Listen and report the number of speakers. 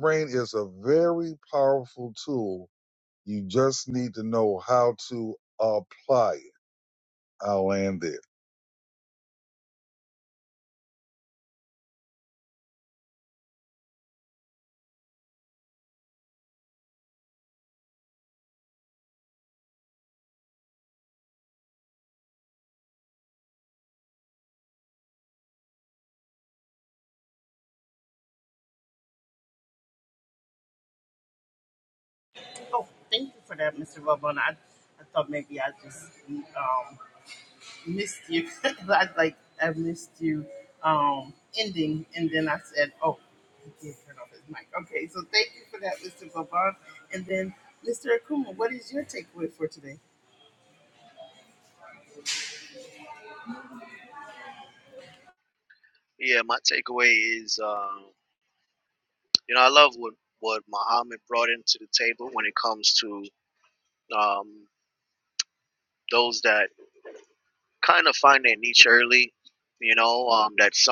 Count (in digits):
3